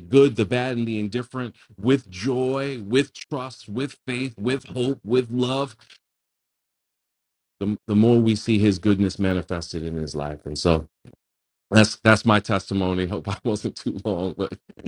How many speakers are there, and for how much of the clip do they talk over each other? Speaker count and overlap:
1, no overlap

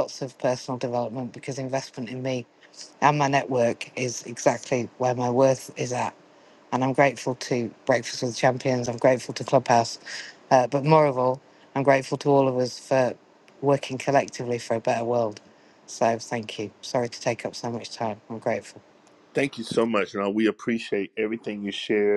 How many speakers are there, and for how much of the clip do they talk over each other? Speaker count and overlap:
2, no overlap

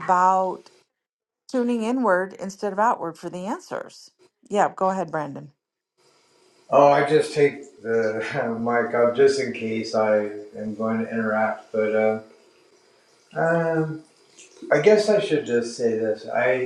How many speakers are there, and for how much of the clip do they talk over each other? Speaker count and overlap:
2, no overlap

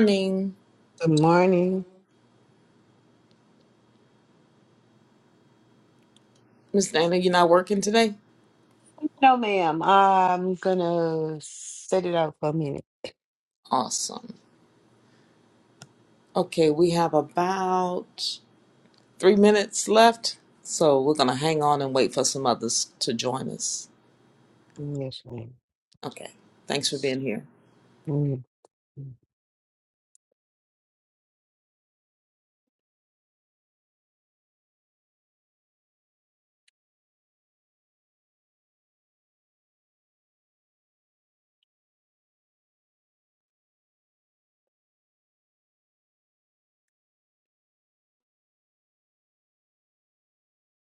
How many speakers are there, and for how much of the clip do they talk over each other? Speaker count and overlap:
2, no overlap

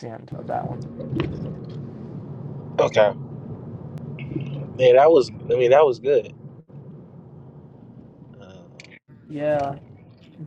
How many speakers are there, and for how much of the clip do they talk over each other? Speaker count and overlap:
2, no overlap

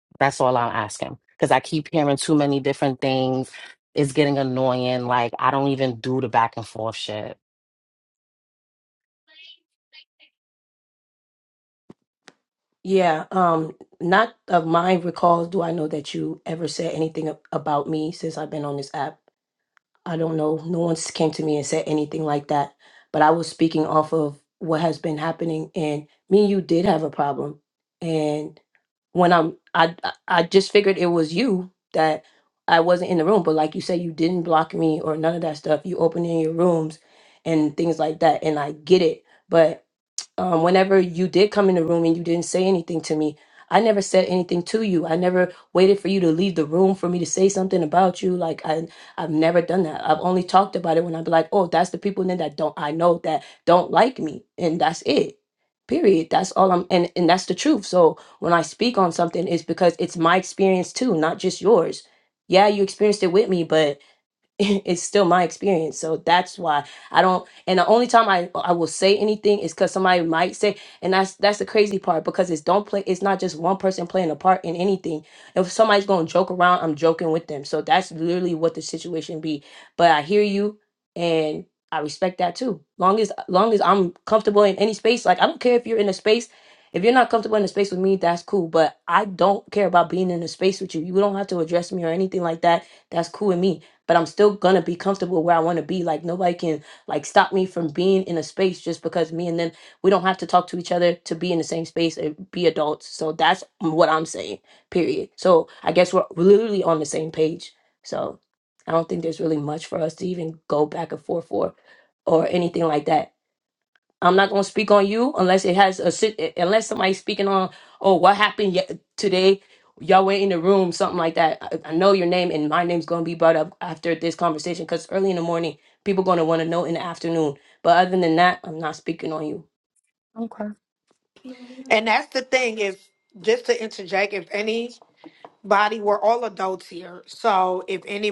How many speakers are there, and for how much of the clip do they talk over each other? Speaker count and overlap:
3, no overlap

